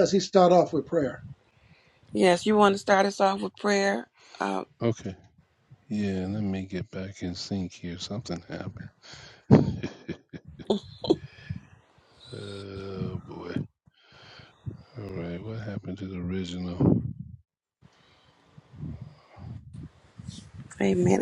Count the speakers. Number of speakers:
three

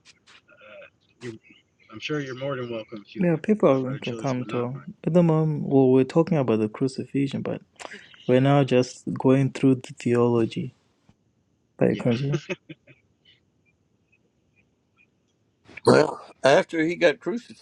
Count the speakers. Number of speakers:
three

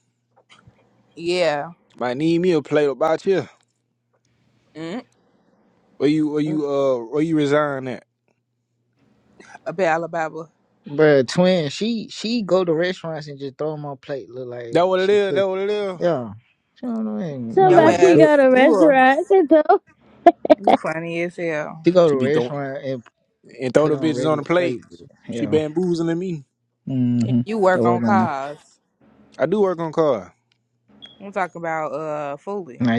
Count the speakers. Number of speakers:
four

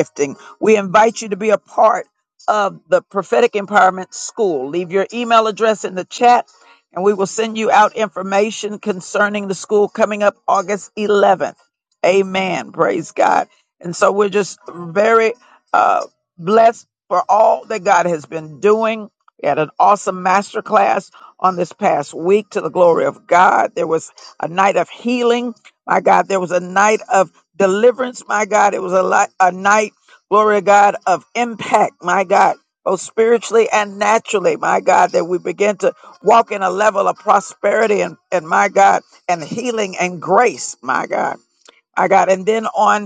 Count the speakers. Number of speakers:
one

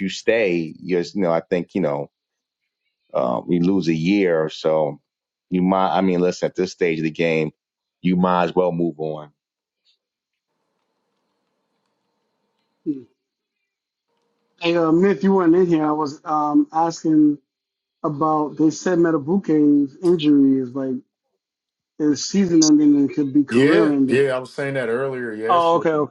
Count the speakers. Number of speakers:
three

